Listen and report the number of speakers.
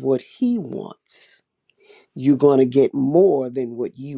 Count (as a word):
one